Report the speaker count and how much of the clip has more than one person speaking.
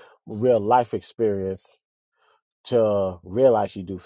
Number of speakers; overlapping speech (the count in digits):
1, no overlap